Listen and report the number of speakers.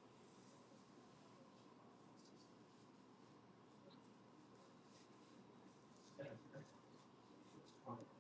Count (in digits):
0